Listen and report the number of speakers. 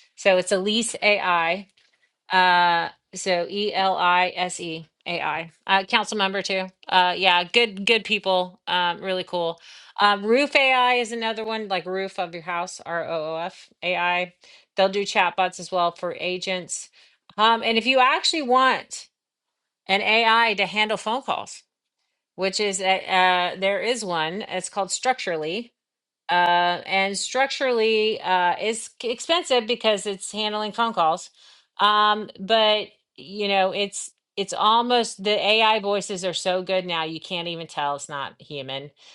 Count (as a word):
one